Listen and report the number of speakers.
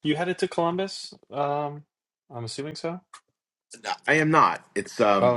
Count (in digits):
2